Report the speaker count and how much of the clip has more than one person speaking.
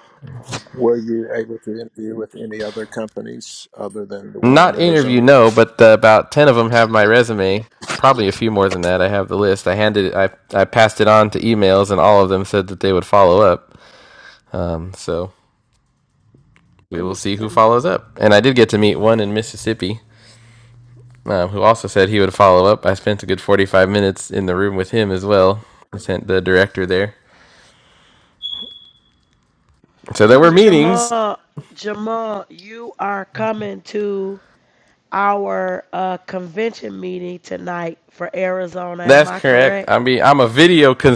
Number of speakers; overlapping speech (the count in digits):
3, about 5%